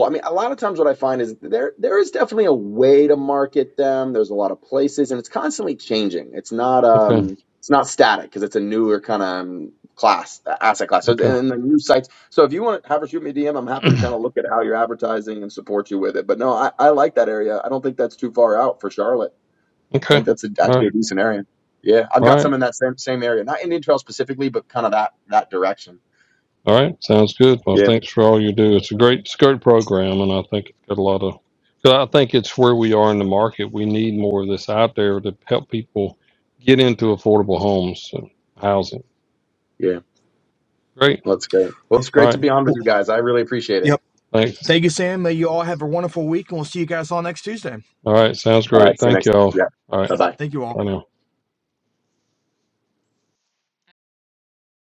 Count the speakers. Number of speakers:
three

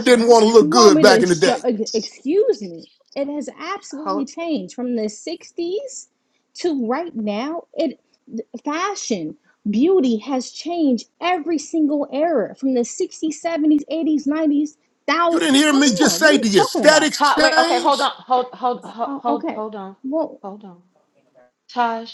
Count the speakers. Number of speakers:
three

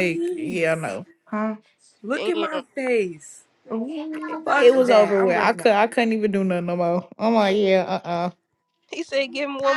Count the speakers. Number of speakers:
four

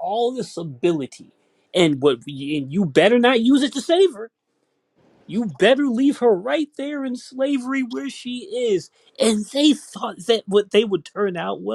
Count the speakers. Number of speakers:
one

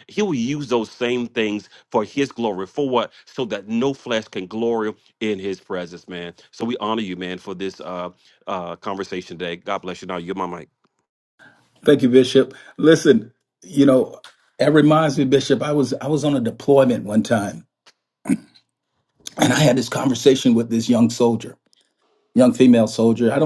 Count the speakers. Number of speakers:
two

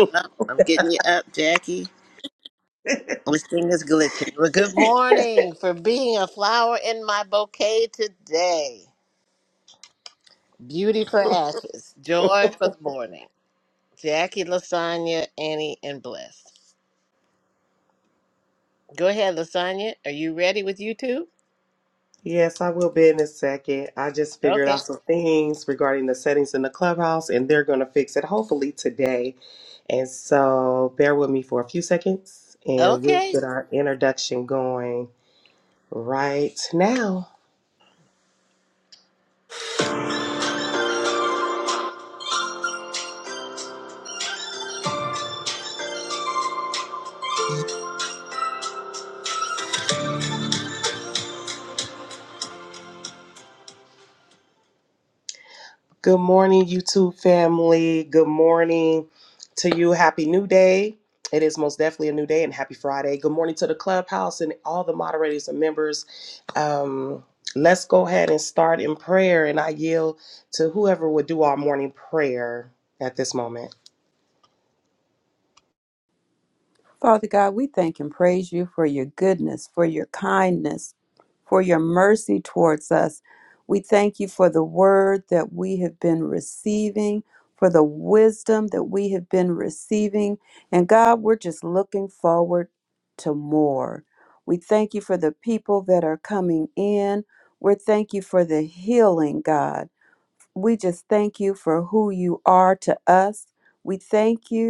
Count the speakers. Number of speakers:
three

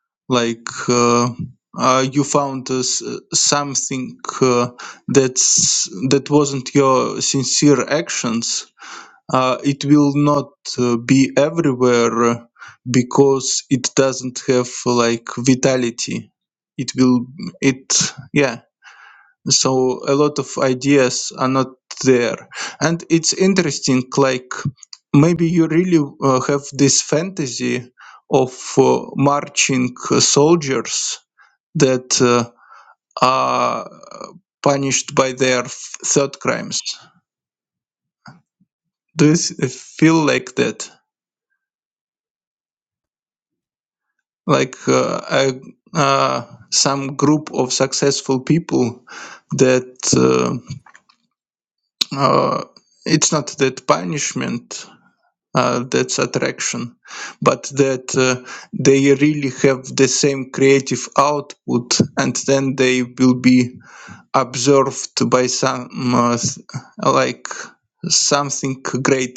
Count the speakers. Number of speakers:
one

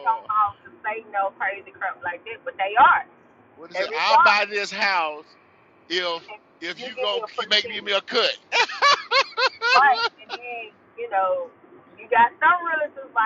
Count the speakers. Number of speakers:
two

